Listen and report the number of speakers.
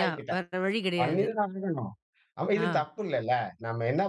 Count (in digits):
2